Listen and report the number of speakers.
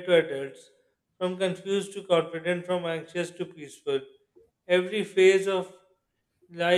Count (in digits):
1